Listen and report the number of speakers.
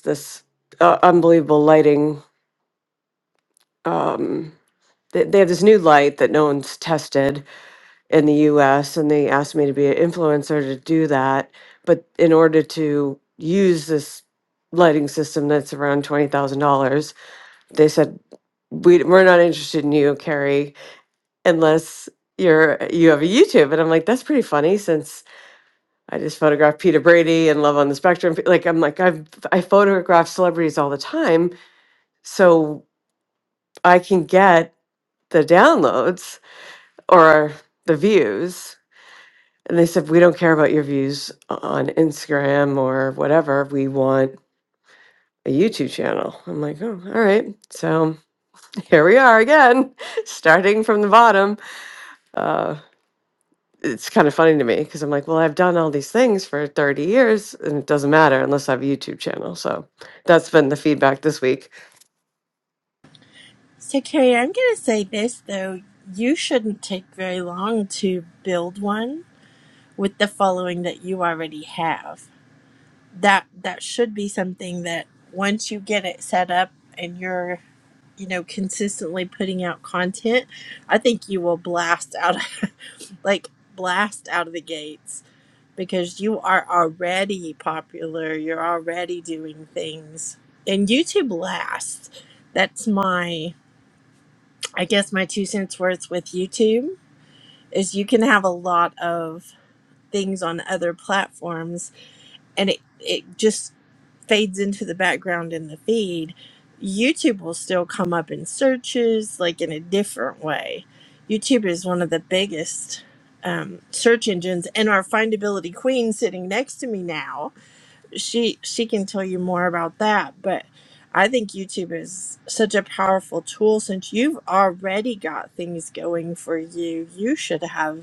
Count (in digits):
2